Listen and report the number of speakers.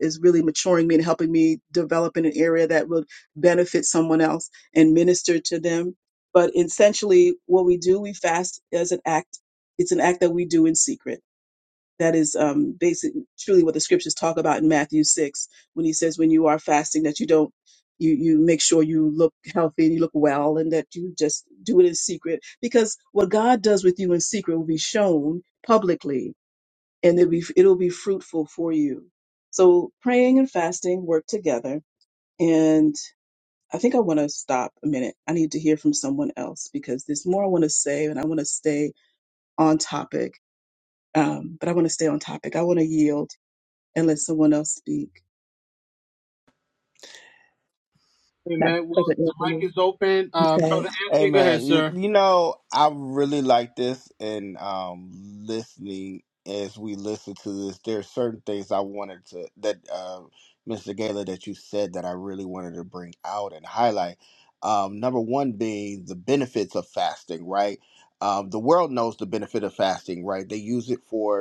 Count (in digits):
3